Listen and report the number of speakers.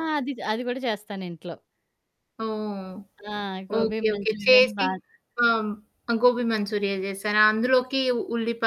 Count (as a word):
two